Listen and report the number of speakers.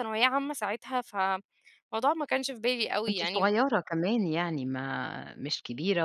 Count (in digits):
2